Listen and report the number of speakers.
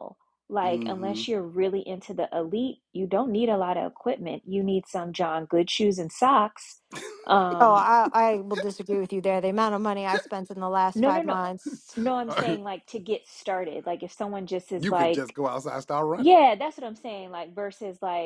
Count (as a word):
three